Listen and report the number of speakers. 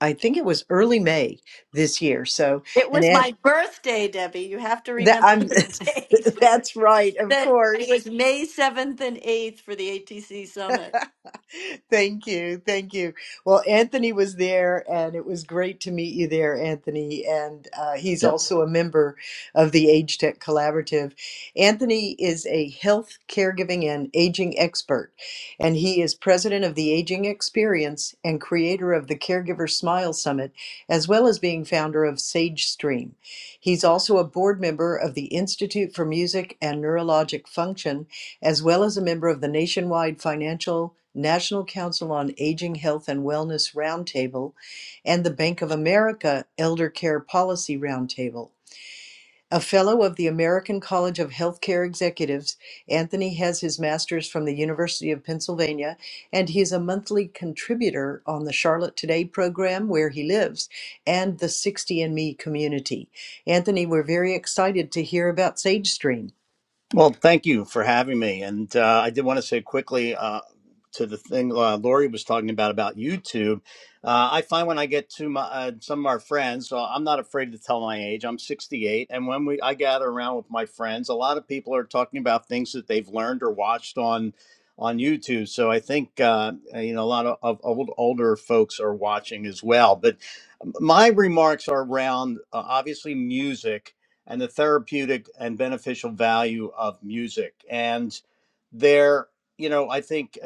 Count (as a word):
three